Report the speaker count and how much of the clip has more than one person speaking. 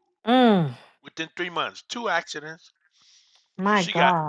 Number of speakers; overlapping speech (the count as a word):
two, about 9%